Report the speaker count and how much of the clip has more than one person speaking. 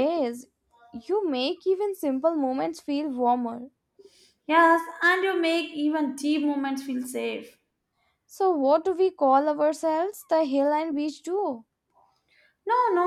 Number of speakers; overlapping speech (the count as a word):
two, no overlap